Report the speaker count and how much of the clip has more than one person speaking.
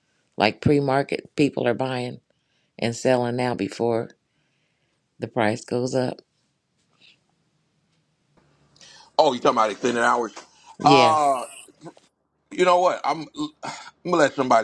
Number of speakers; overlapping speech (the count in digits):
2, about 3%